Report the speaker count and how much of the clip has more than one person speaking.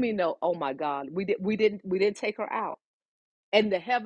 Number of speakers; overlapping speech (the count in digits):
1, no overlap